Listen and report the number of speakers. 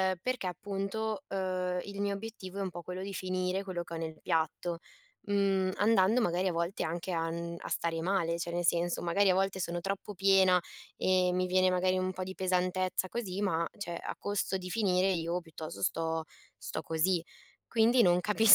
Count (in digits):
1